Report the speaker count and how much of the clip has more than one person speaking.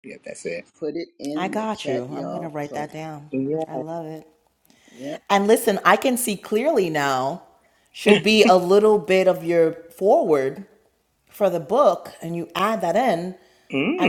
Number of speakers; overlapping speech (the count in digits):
3, about 13%